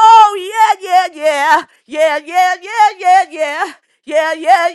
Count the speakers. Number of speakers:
1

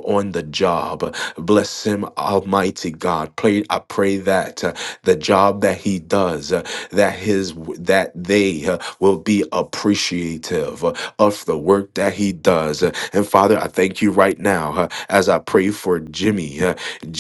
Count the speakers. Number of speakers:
1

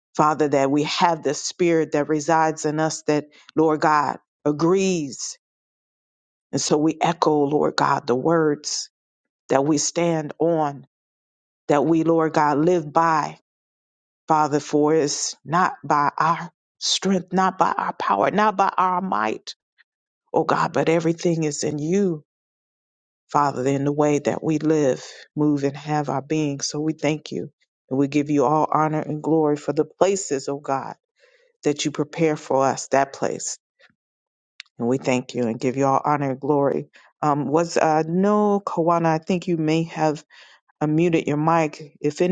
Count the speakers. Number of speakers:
1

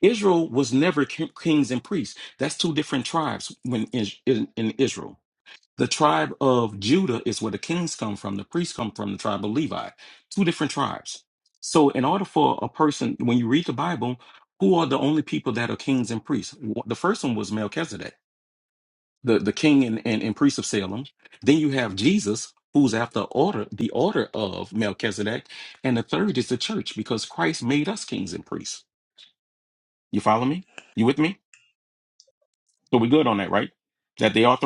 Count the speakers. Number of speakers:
1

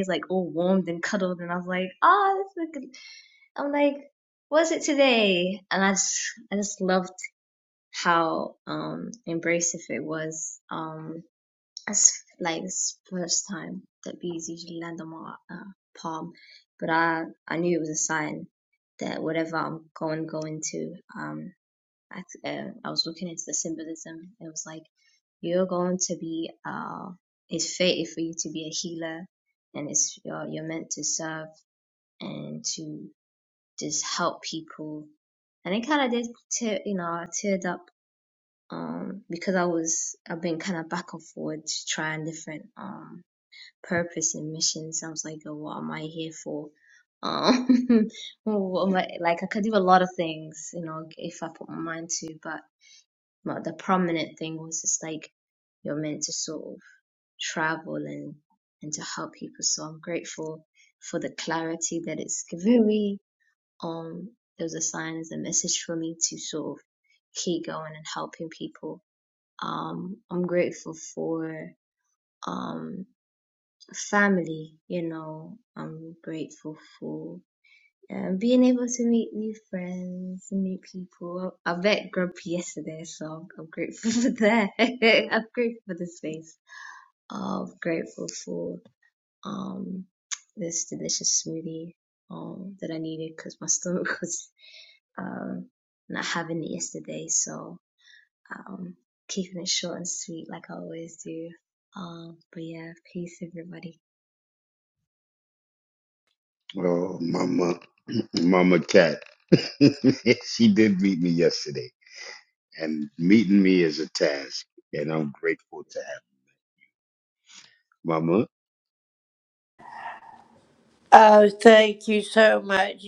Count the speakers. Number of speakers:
3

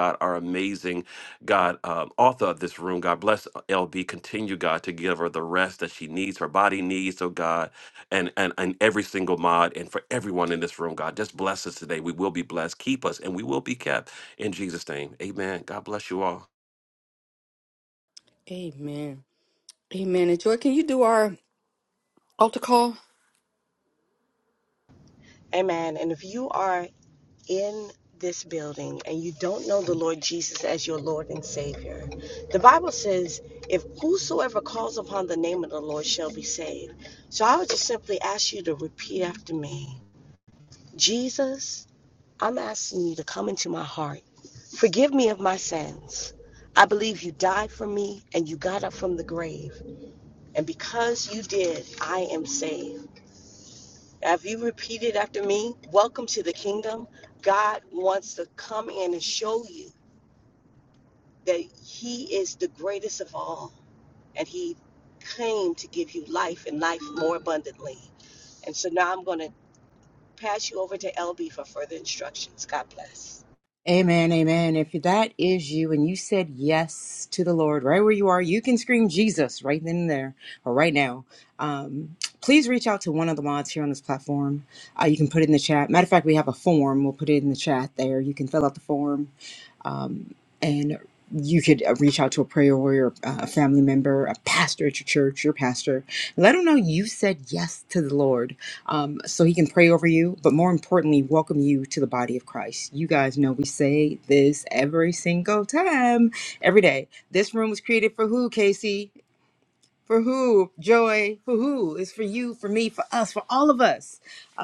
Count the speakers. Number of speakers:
4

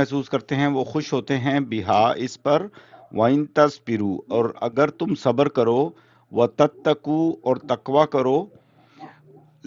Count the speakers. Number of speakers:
1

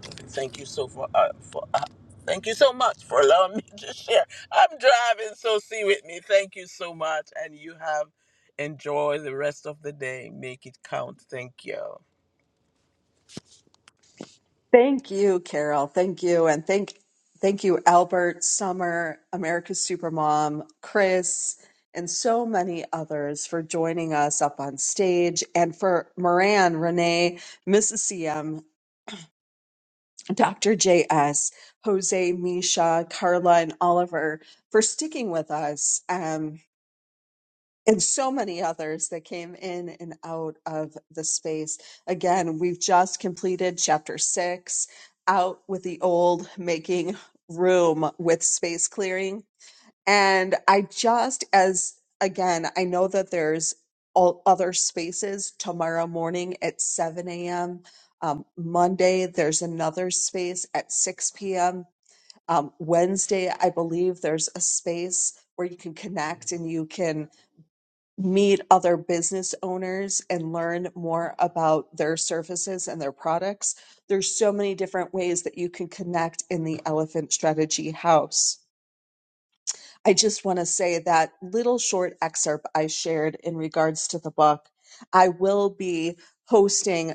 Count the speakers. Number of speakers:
2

